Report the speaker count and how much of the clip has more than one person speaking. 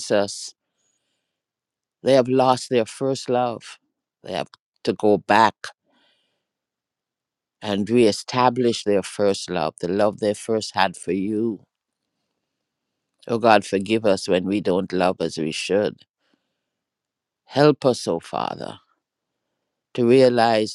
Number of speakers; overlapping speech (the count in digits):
1, no overlap